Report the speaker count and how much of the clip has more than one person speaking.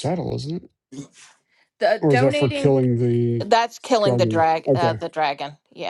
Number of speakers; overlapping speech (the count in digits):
2, about 29%